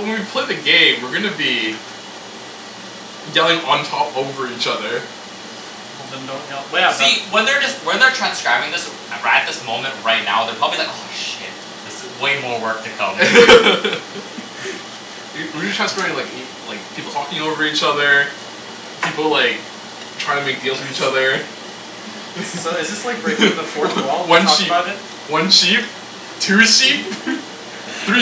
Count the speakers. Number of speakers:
three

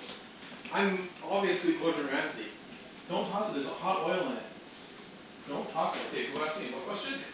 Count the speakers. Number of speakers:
three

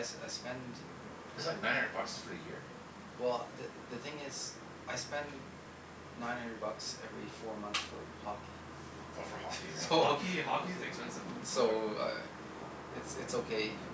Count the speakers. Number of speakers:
three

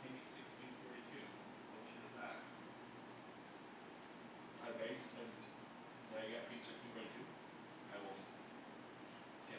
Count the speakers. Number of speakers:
one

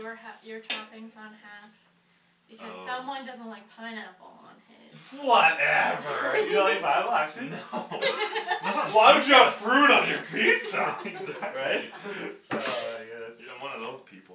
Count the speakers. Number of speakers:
three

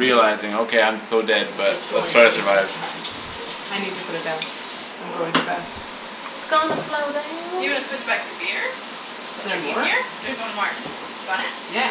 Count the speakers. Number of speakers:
three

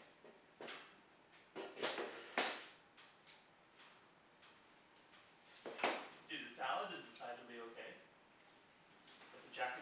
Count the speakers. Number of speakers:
one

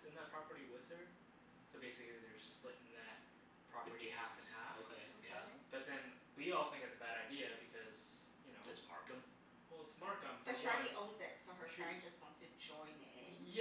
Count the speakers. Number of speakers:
three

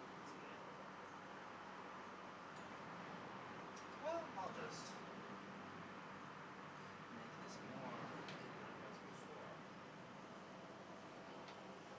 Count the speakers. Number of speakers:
one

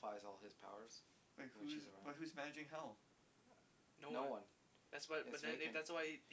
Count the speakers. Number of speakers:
three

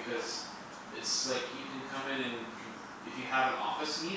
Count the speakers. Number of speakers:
one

